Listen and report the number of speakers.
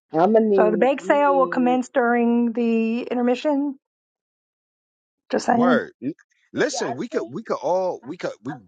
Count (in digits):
3